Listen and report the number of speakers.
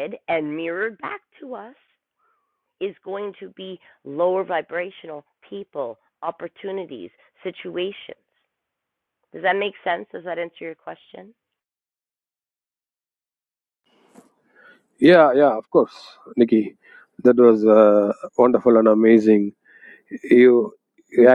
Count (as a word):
two